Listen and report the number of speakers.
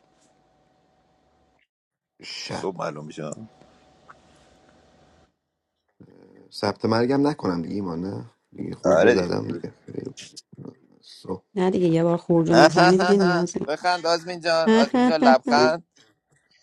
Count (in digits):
3